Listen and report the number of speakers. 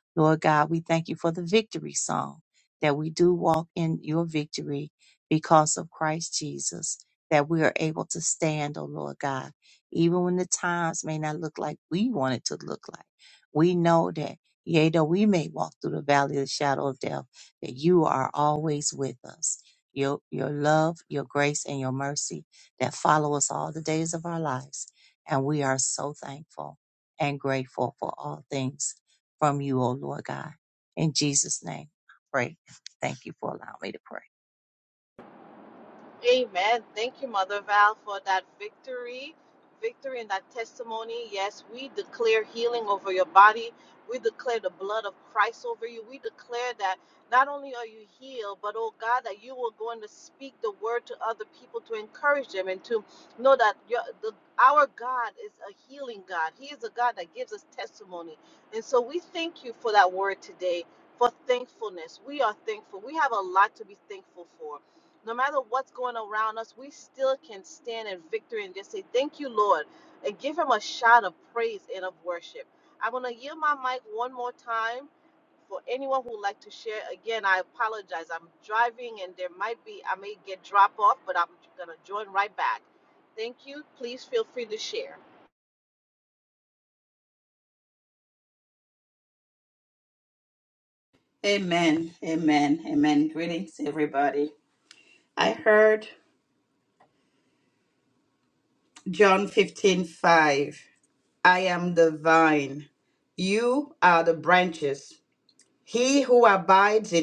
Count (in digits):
3